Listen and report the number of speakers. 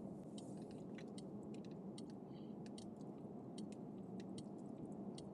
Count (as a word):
zero